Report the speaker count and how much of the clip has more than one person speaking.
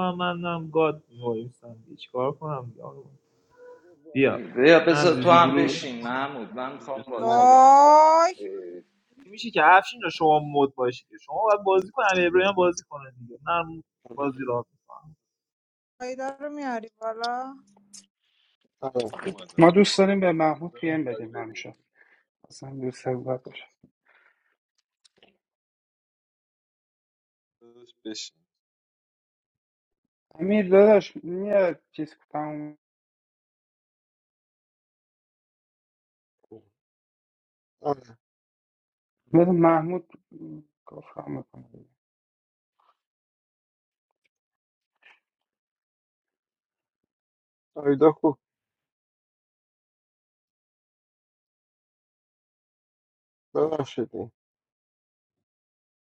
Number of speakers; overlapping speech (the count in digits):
6, about 6%